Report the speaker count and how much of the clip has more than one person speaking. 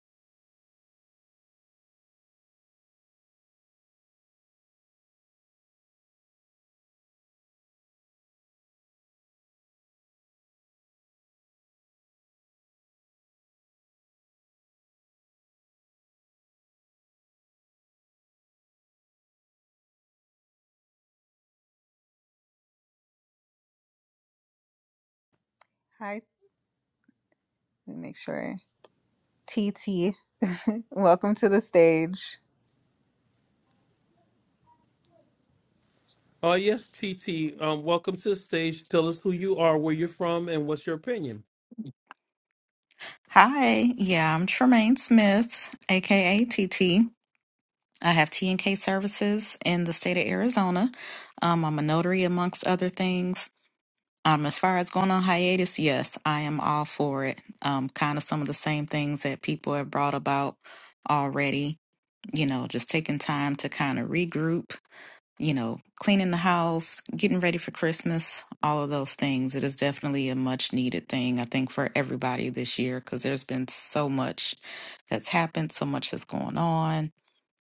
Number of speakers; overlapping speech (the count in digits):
3, no overlap